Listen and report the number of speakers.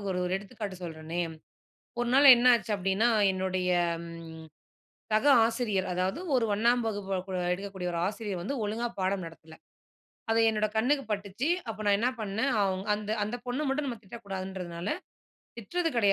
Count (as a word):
one